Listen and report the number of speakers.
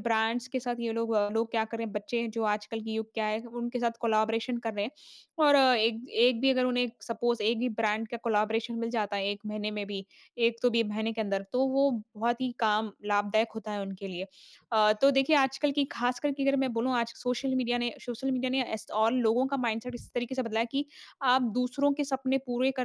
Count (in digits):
1